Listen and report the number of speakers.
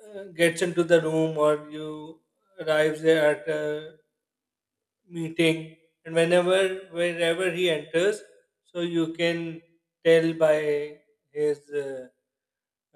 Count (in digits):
1